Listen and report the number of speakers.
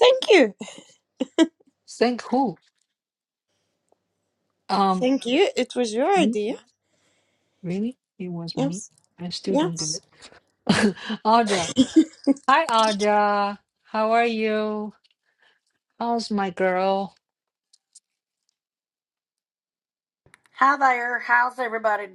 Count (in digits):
3